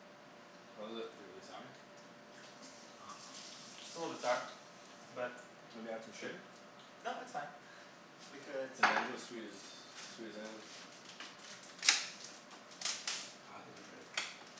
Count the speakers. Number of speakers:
three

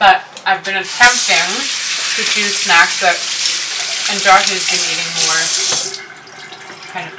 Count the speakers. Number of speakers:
one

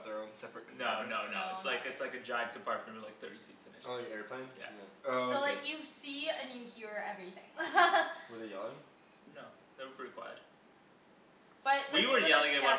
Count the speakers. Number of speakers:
four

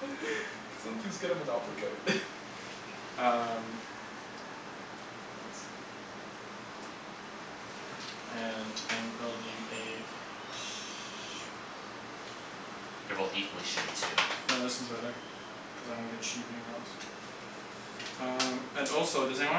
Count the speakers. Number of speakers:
three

